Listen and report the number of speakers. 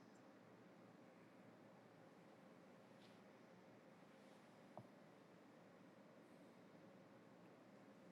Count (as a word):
zero